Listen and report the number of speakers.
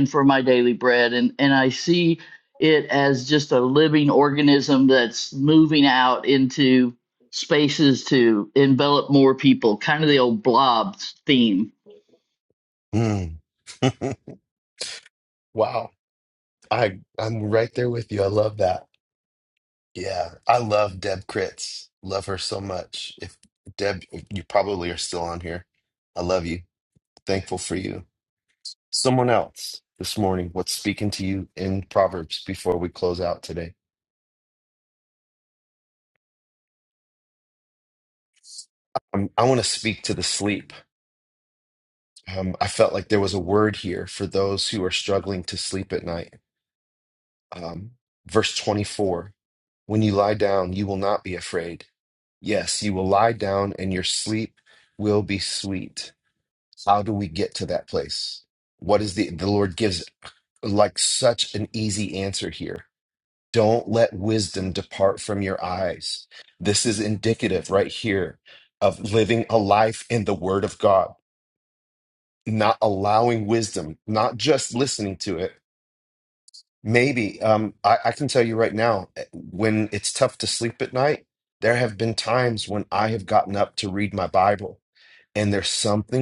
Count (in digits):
2